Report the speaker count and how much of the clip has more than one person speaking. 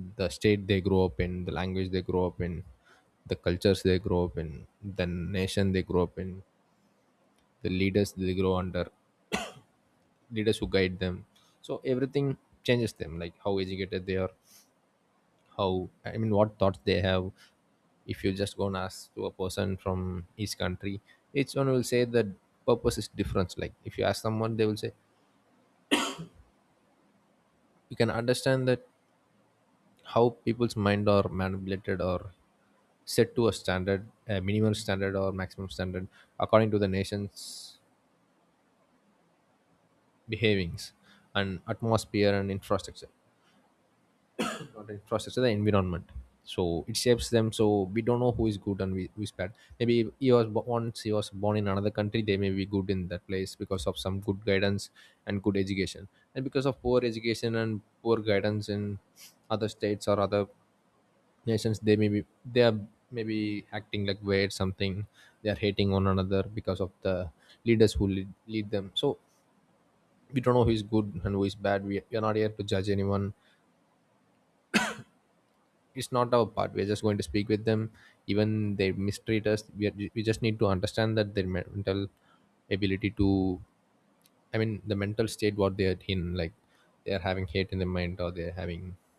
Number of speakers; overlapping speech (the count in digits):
1, no overlap